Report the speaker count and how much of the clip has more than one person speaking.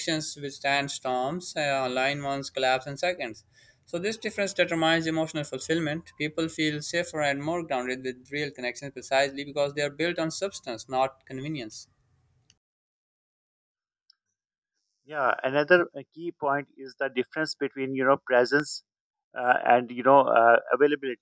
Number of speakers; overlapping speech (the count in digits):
2, no overlap